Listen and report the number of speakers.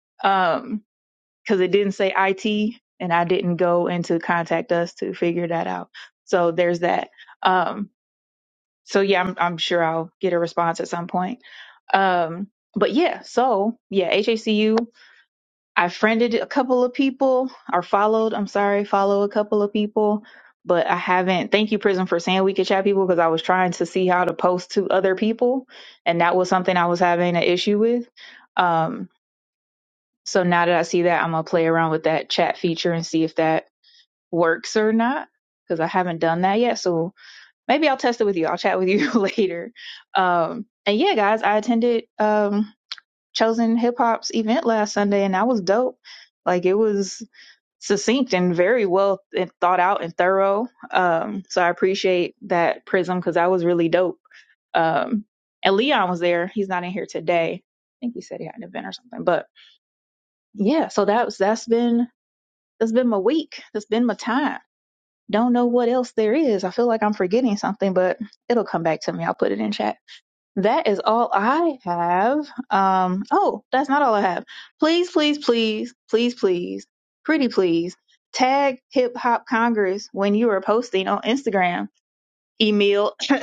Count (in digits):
1